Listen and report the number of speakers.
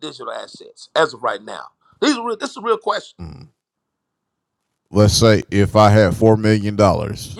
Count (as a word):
two